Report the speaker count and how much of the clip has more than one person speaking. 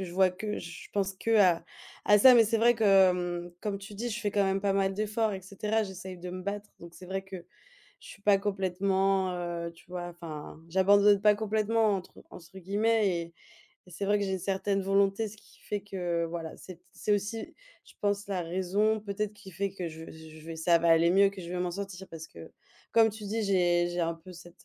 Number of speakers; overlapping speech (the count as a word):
one, no overlap